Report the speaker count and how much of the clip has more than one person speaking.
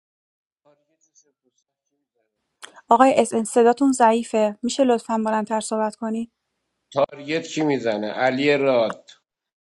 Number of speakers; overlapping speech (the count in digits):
2, no overlap